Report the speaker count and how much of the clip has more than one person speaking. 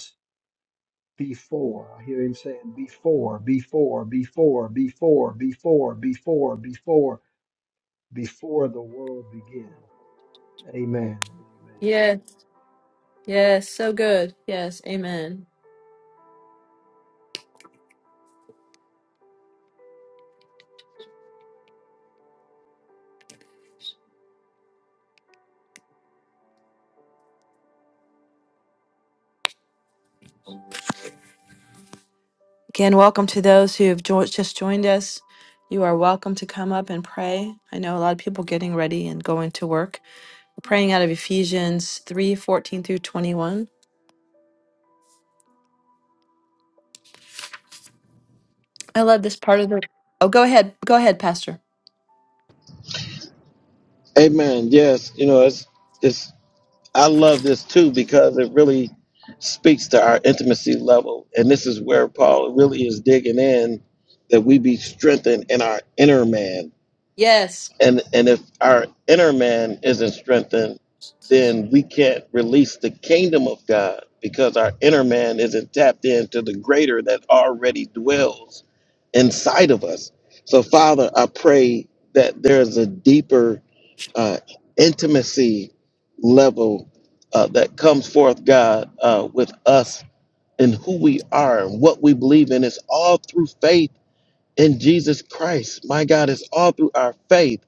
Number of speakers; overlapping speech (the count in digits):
3, no overlap